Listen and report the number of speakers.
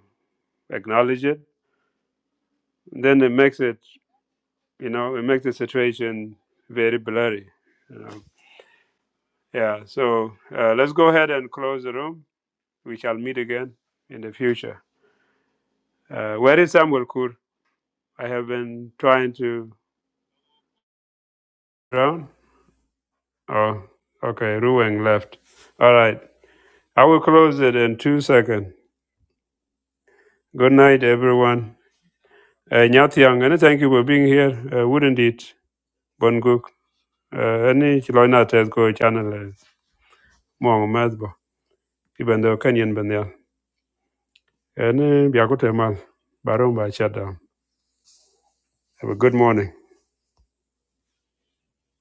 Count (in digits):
1